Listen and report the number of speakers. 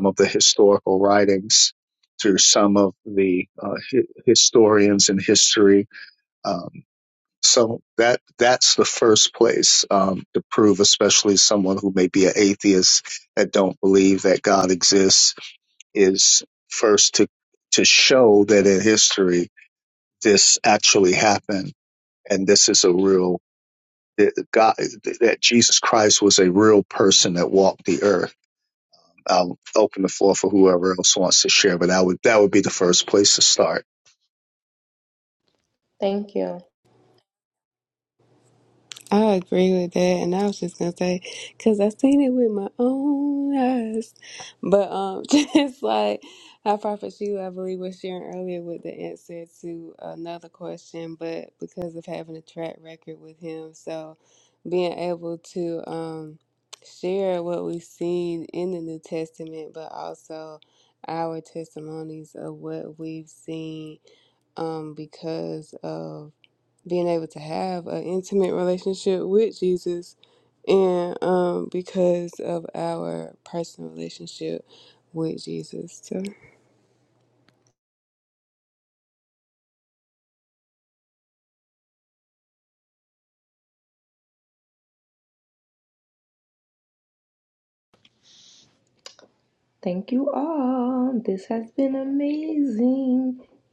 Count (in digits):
3